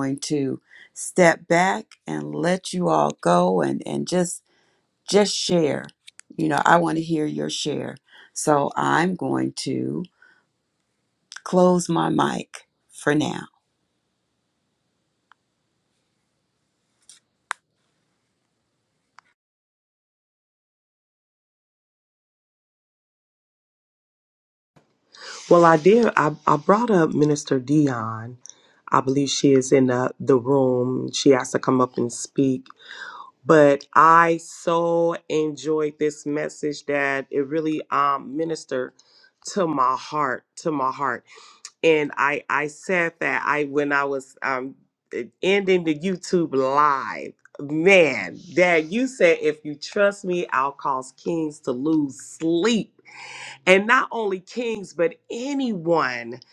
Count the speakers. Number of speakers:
two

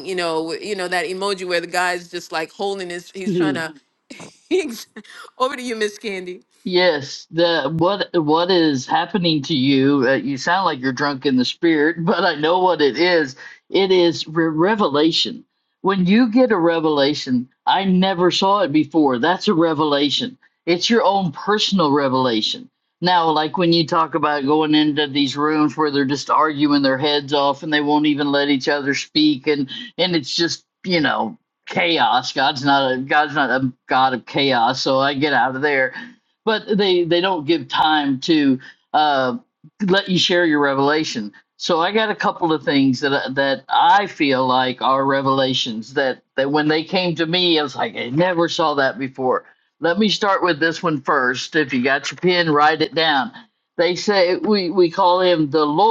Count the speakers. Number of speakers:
two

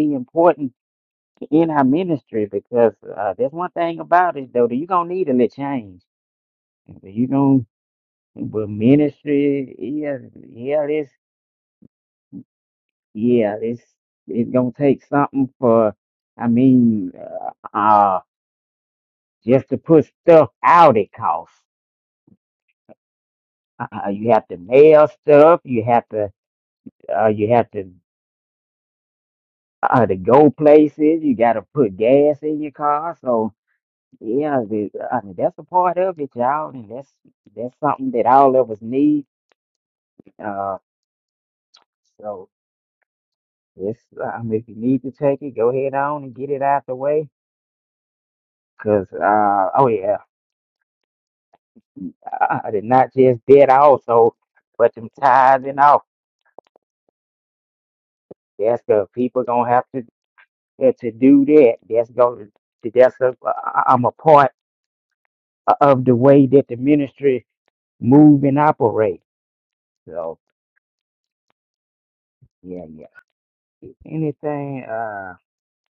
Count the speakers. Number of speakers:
one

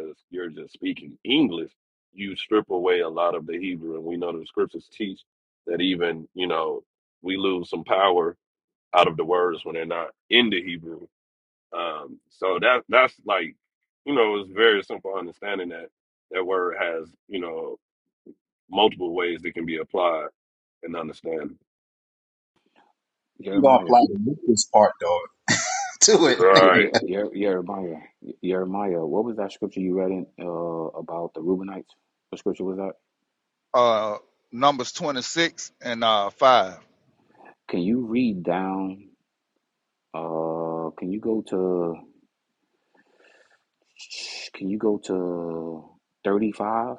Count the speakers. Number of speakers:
four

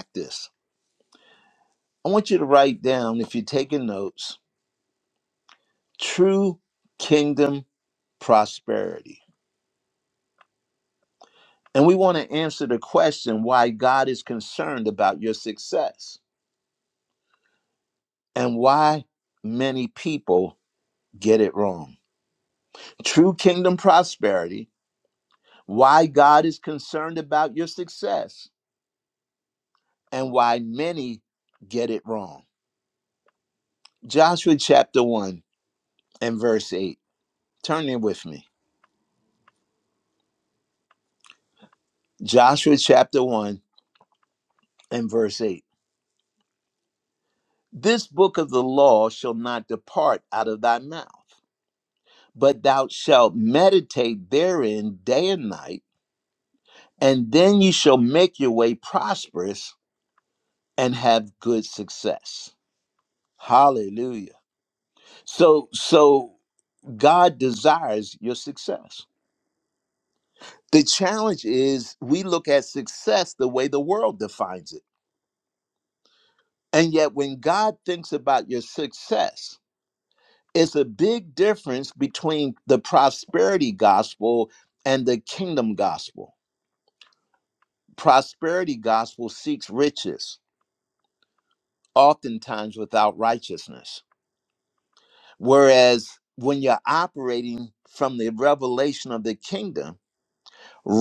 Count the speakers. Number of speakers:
one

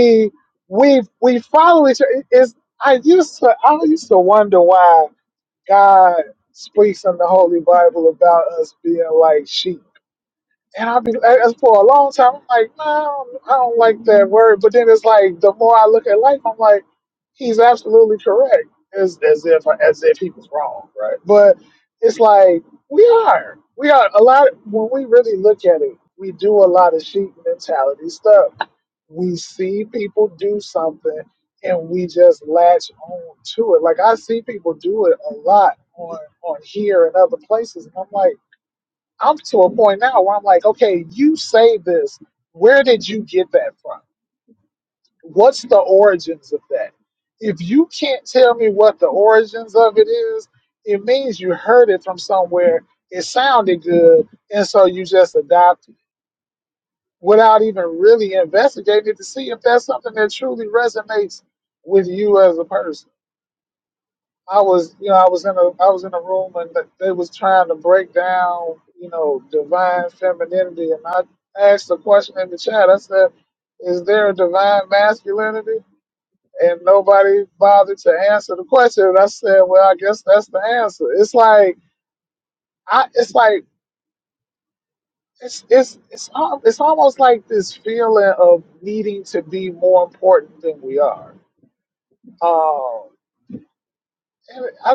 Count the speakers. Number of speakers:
one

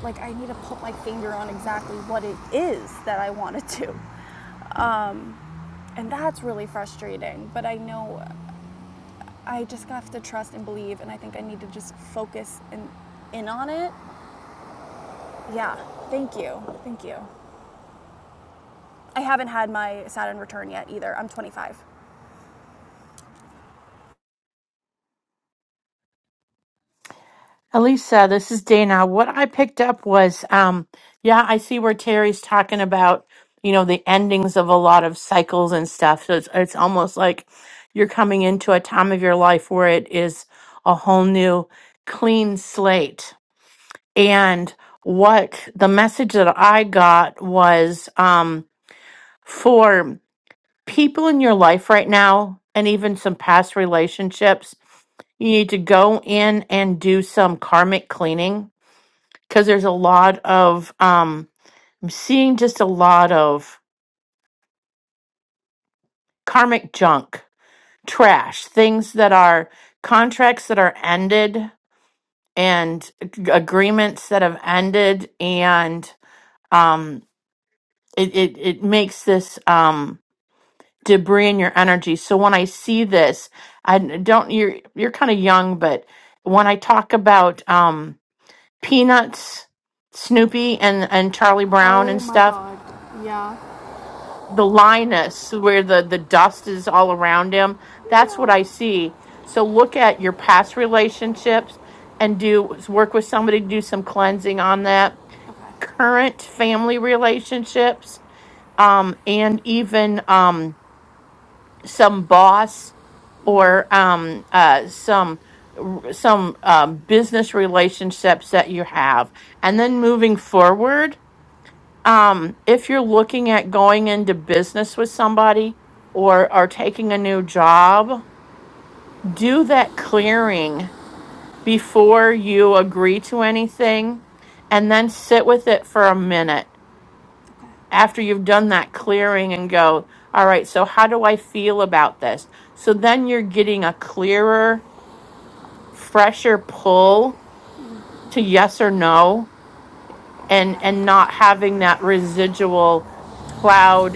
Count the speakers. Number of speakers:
two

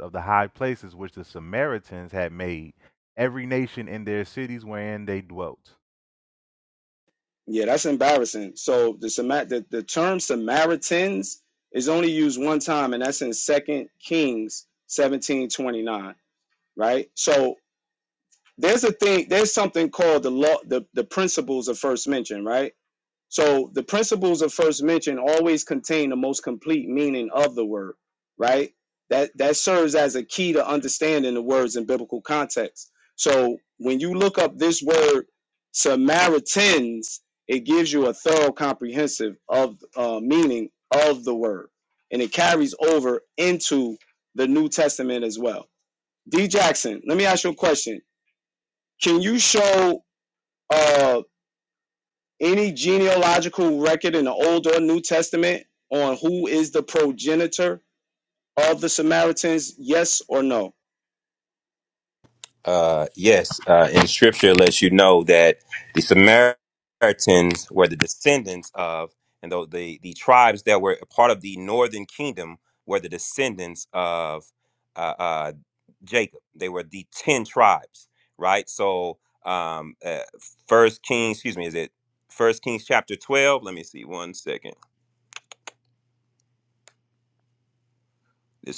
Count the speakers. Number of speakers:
three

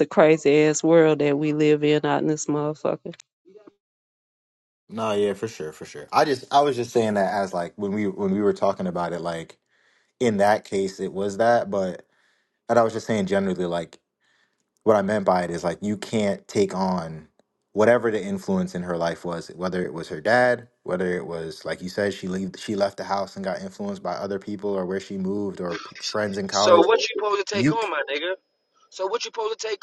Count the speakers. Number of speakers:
three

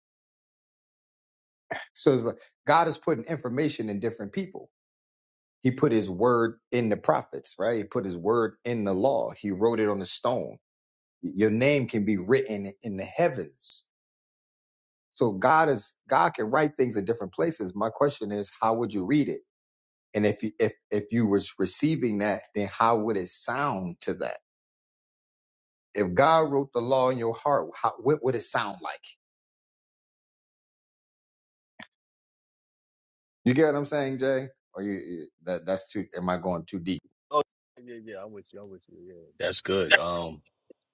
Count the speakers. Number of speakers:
two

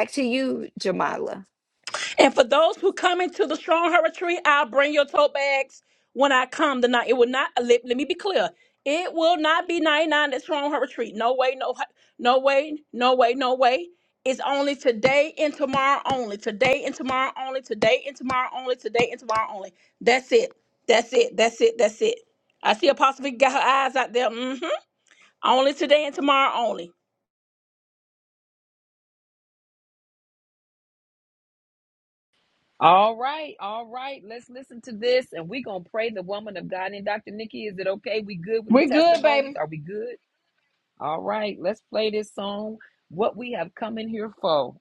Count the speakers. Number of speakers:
three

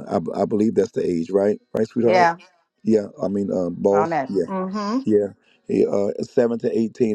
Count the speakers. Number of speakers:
two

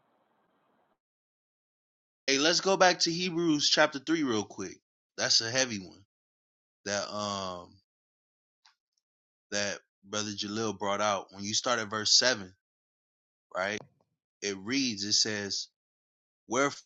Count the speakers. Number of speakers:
one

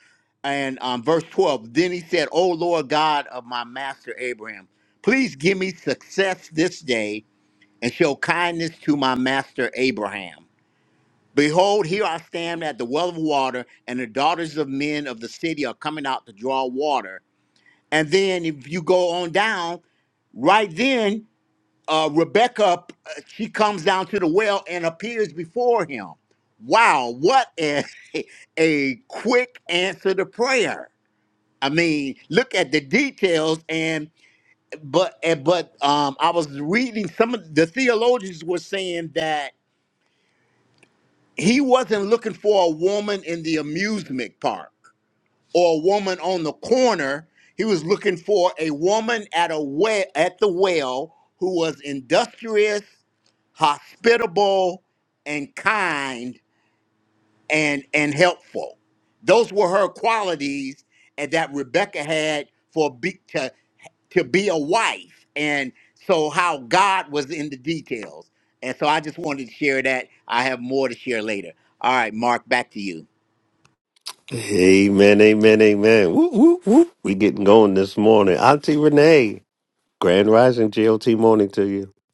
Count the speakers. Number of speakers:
two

